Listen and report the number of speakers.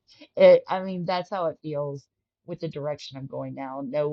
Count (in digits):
1